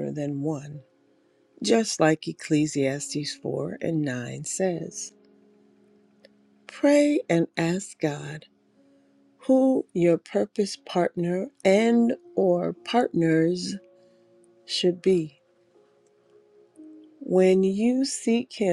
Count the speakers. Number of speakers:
one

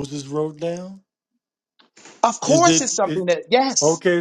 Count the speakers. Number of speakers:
two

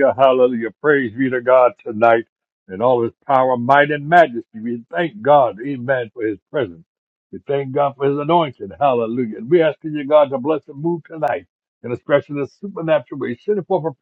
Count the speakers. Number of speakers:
one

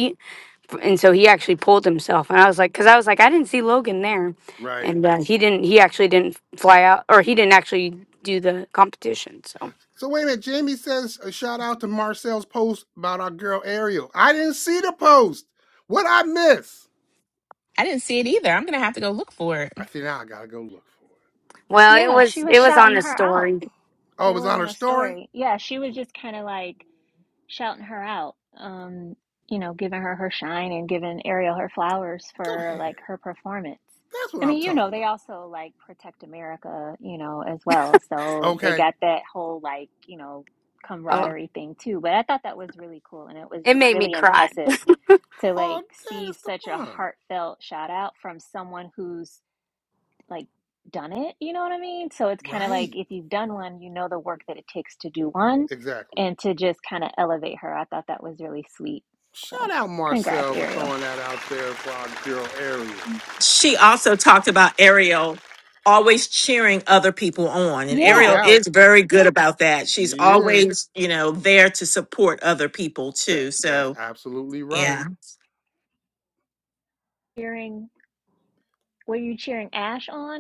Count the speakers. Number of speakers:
five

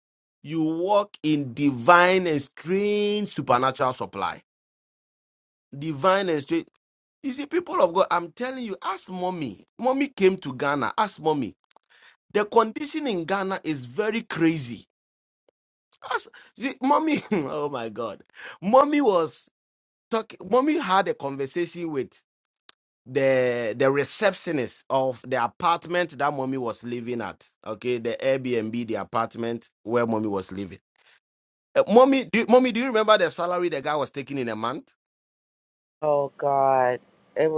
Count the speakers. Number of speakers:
two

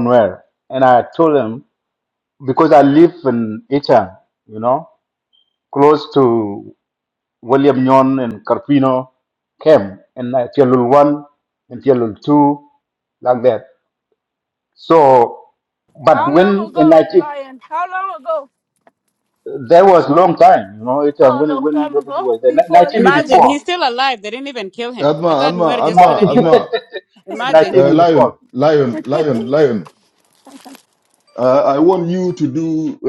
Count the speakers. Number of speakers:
four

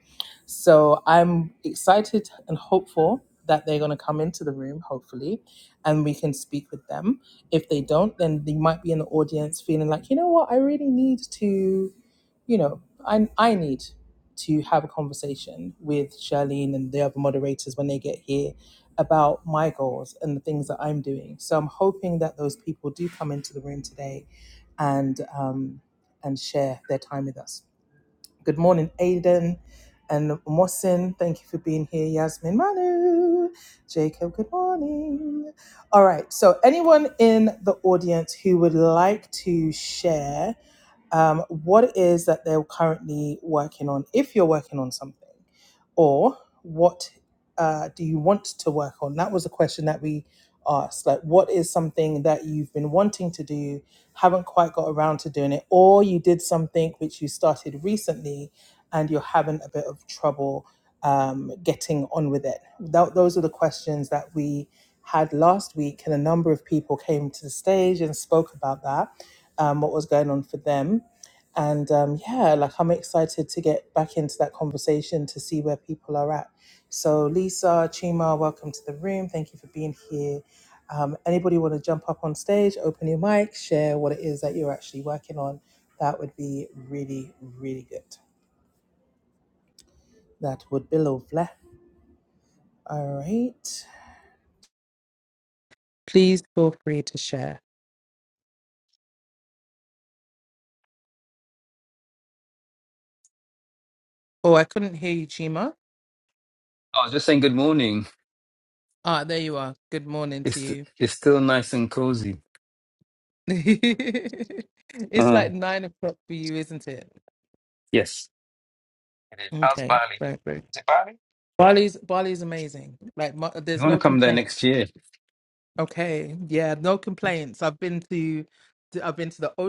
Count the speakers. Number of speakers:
two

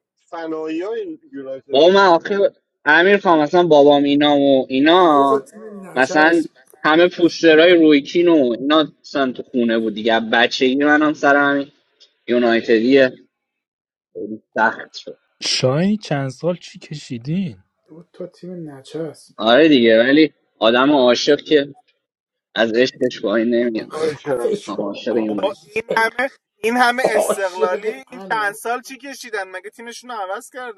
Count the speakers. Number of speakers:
five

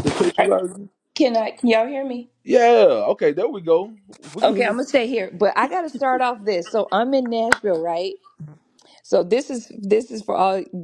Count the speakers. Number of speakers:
two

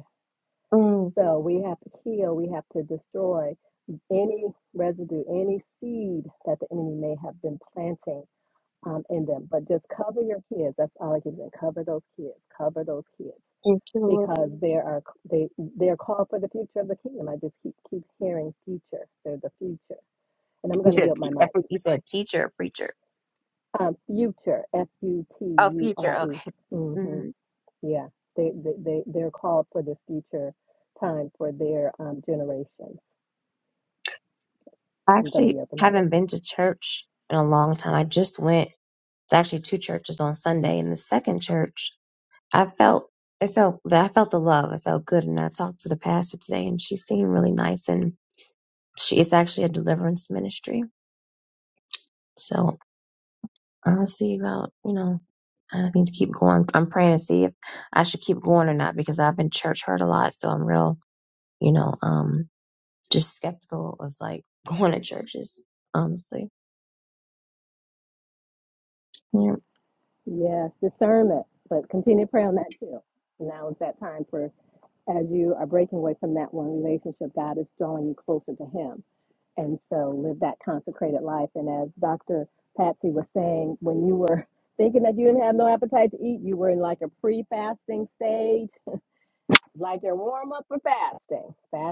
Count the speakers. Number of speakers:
two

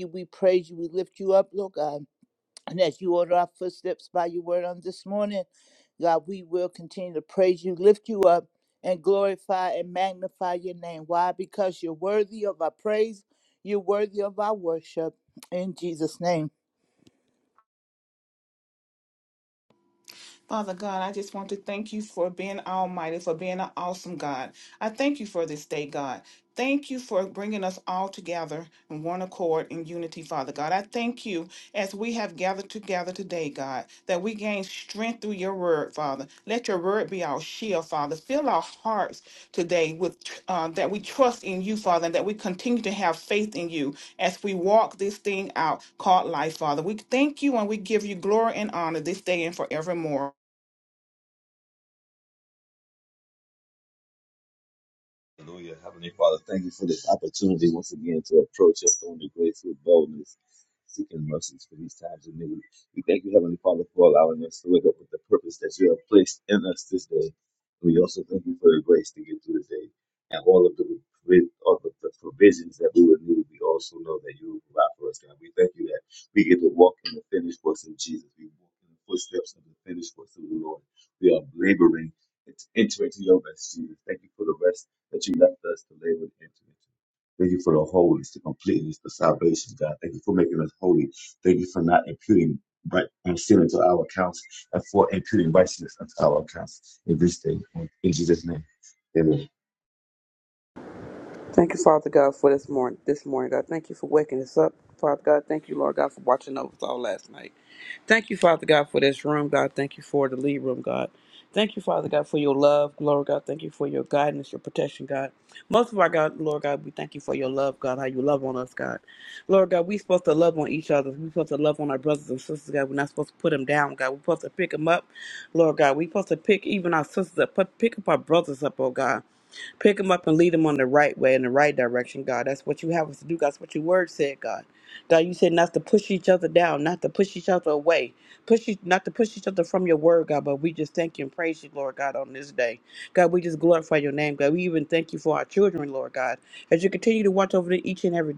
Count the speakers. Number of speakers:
four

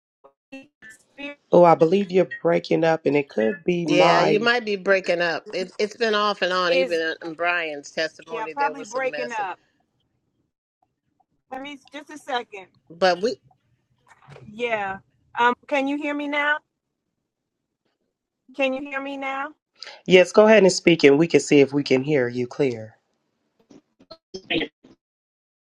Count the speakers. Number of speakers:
three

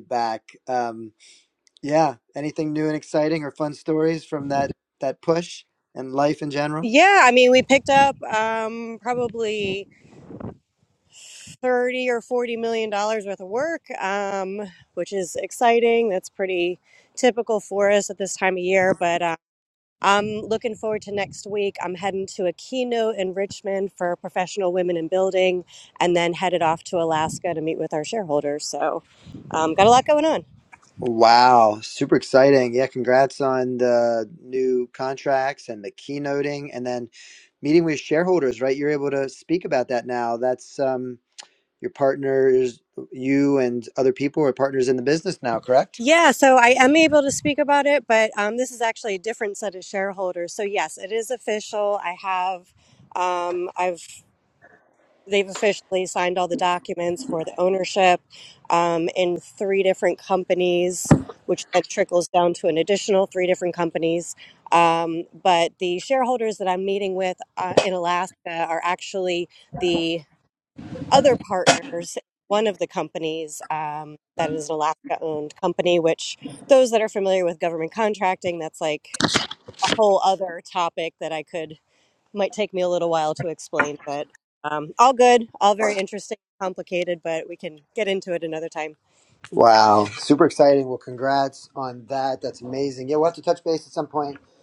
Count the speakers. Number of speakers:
two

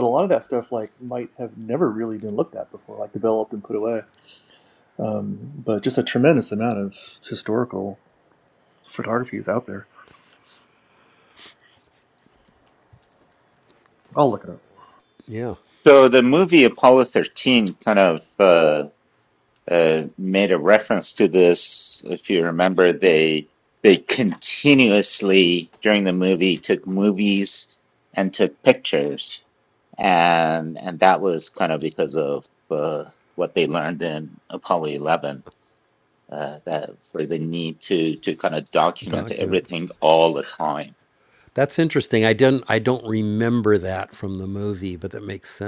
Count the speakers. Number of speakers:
three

